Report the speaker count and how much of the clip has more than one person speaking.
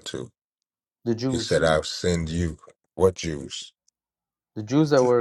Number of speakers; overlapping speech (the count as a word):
two, about 3%